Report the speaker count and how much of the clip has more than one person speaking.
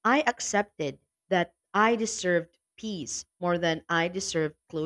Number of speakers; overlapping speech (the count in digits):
1, no overlap